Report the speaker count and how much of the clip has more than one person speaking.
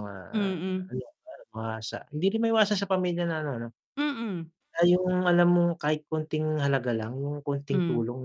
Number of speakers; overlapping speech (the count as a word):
two, about 4%